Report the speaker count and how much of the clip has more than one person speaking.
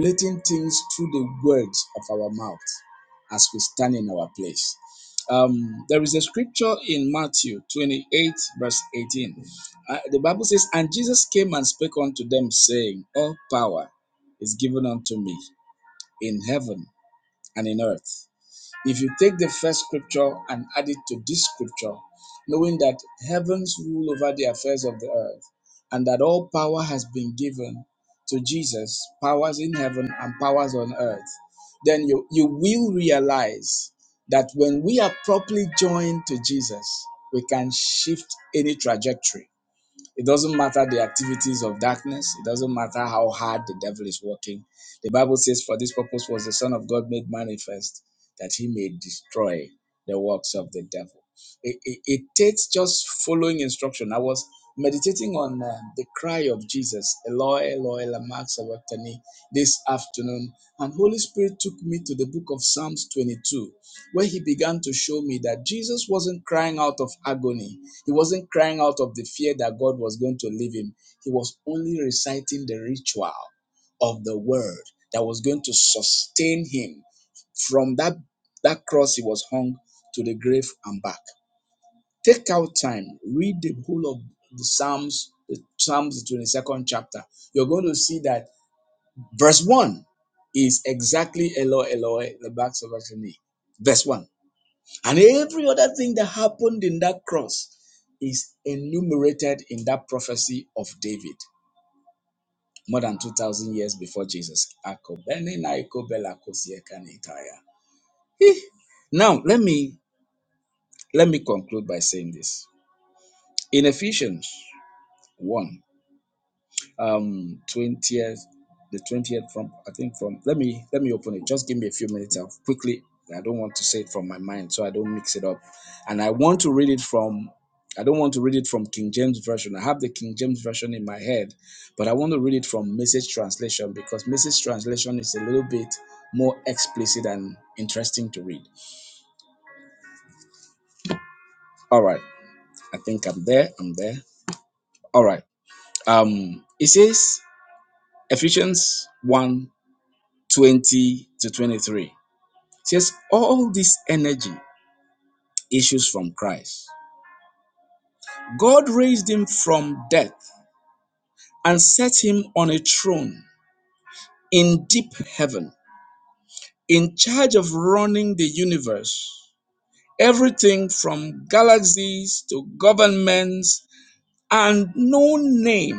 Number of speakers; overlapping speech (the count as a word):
one, no overlap